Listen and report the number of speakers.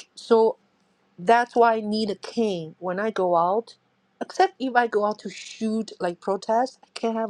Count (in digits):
1